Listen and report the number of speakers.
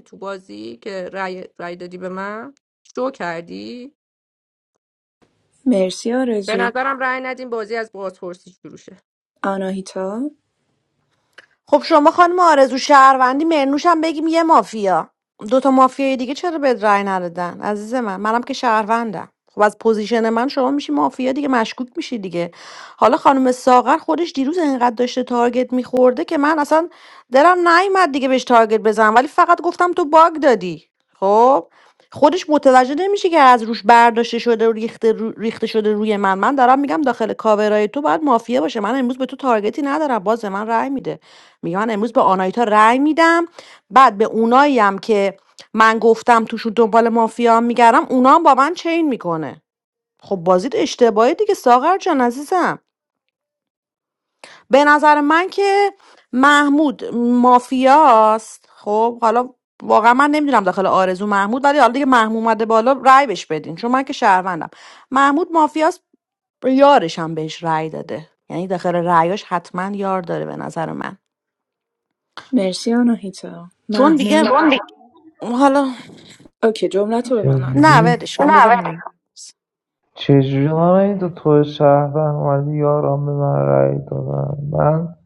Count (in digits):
4